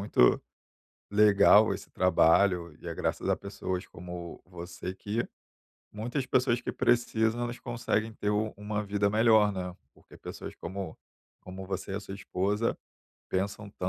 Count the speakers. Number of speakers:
1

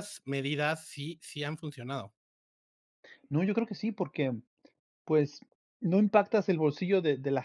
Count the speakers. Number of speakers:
2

